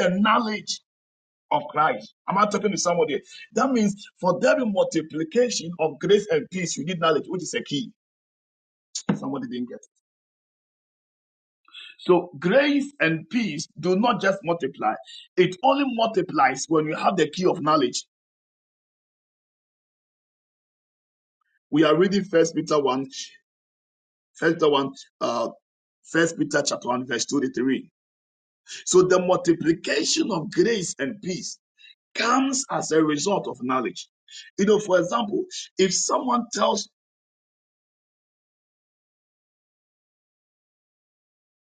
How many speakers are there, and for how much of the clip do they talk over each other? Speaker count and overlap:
1, no overlap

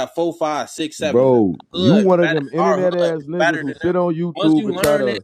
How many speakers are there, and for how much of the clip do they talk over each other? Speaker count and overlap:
2, about 66%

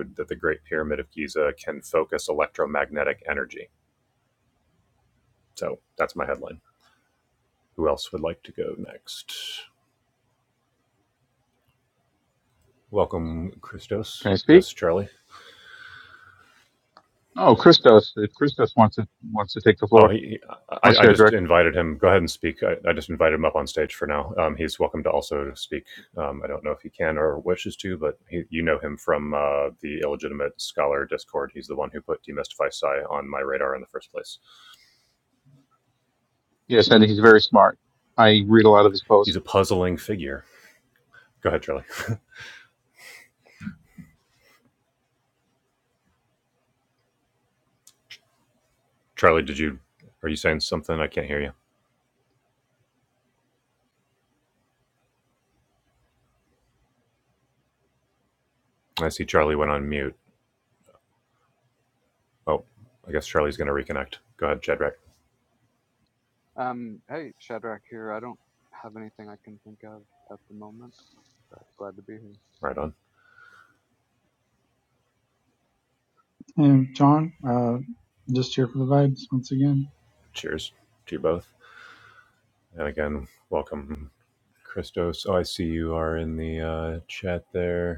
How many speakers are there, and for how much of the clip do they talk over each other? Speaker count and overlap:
4, about 1%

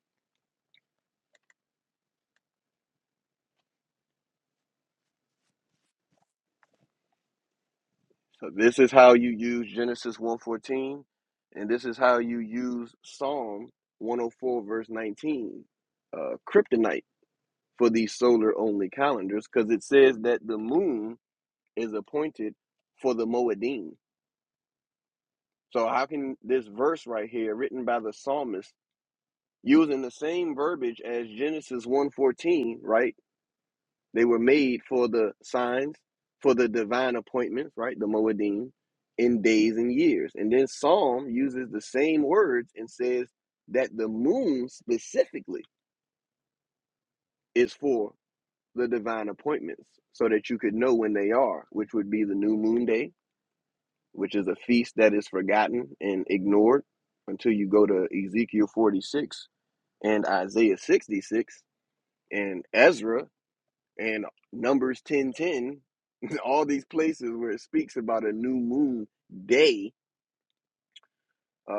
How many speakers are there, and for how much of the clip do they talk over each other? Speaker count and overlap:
1, no overlap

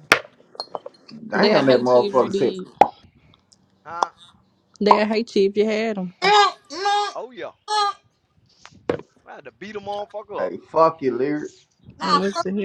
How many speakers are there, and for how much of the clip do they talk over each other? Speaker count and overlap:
4, about 16%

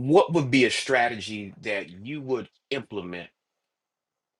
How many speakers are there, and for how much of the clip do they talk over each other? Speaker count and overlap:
1, no overlap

